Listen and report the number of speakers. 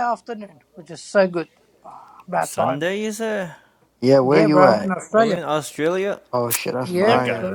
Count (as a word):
three